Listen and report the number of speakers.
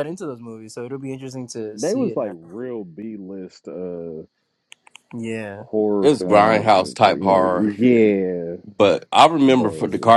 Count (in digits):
3